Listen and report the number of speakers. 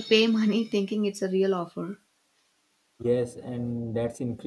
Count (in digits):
2